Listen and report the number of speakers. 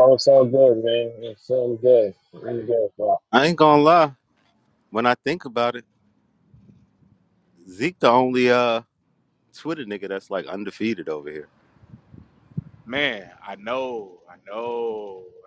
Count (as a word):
three